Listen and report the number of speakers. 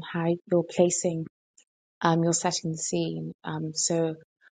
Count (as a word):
one